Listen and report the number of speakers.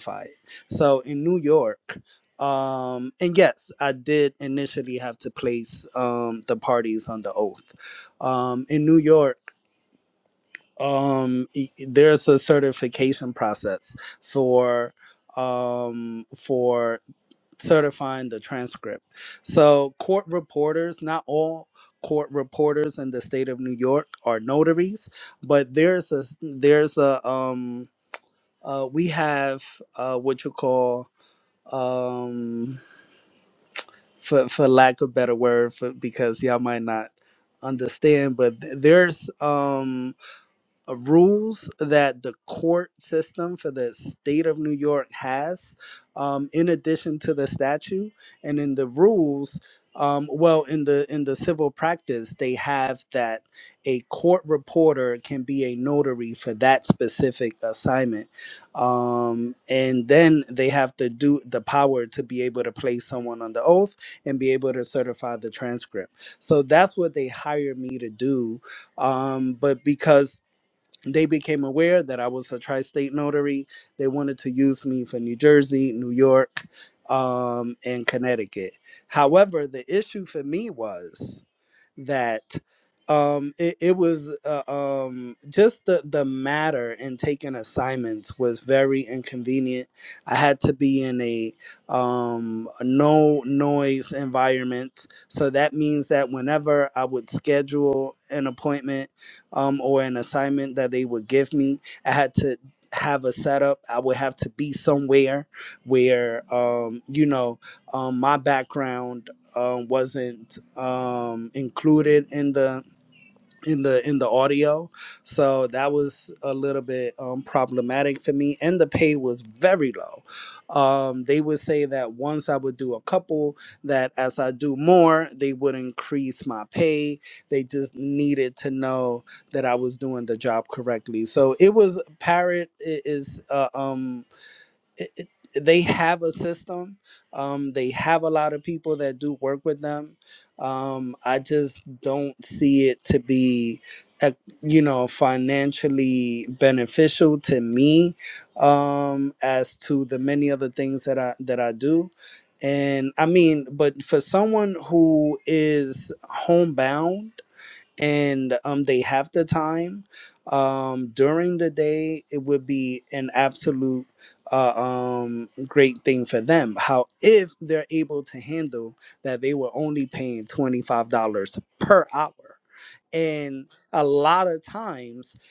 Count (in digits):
1